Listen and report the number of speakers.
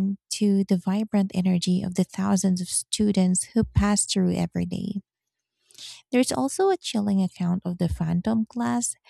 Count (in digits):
1